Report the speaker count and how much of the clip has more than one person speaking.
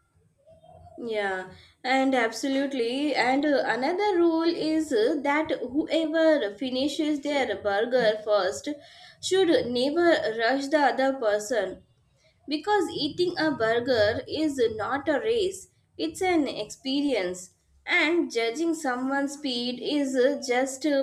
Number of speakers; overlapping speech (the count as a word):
one, no overlap